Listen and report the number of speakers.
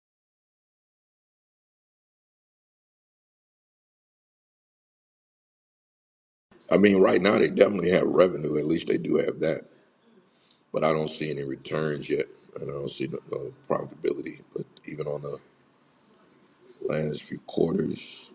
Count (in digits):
1